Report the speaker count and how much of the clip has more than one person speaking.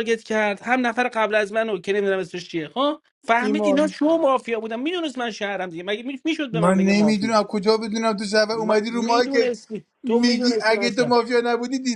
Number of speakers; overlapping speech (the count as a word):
two, about 28%